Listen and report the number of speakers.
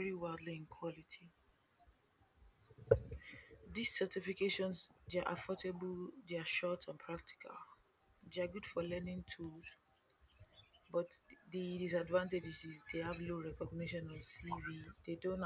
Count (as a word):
one